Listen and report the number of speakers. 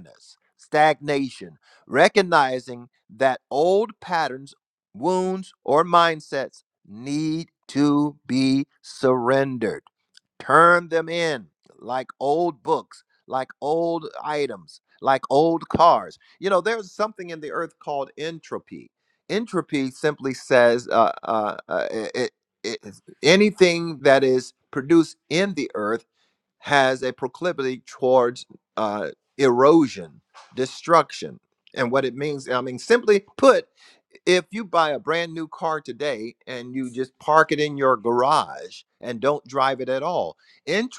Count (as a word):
one